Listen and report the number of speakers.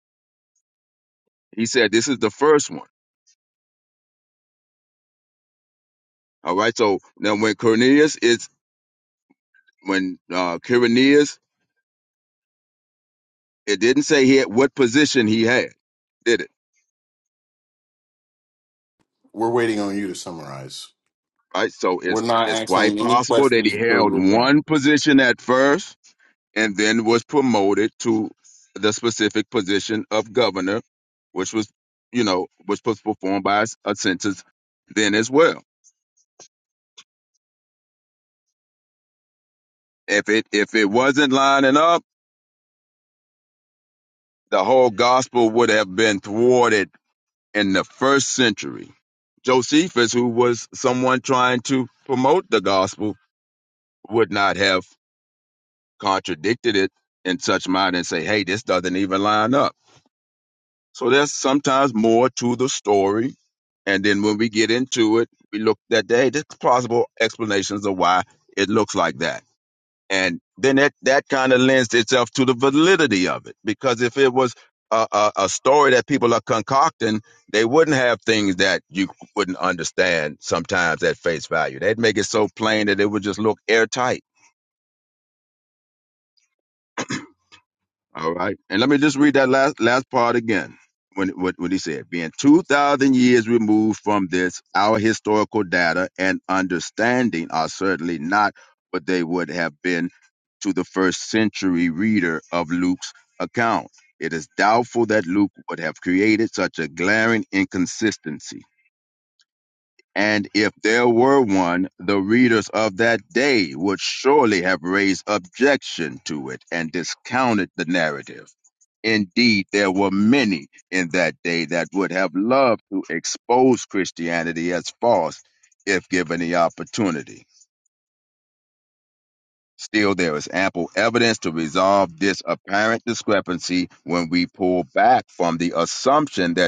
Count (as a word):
two